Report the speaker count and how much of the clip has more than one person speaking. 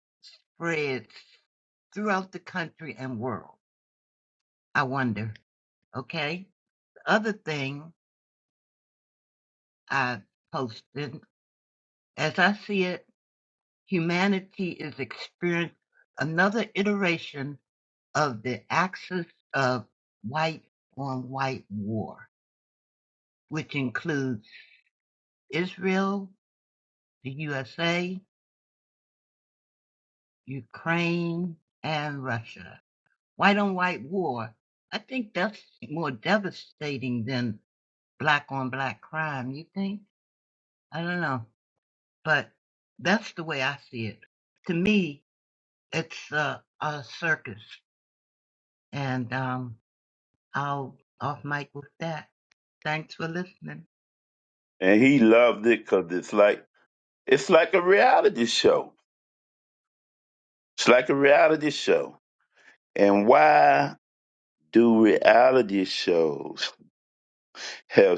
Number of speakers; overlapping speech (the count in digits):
2, no overlap